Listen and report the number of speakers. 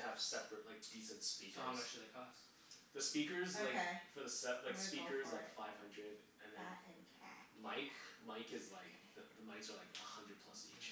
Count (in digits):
3